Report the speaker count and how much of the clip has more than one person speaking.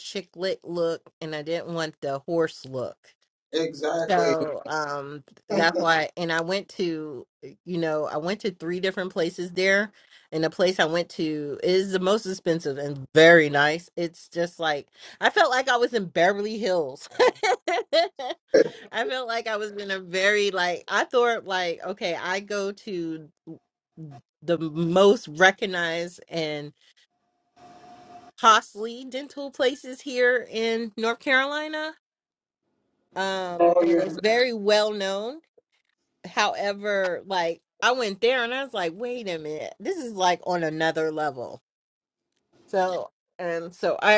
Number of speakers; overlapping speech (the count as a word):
two, about 2%